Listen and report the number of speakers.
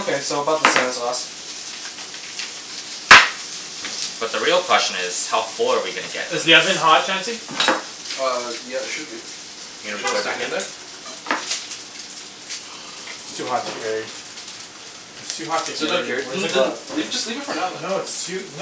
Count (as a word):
four